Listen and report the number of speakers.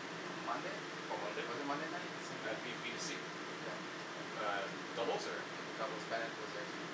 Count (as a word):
two